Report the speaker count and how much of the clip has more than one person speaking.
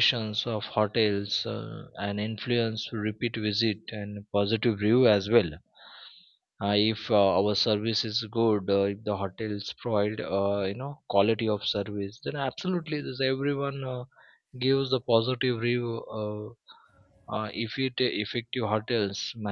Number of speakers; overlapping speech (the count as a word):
one, no overlap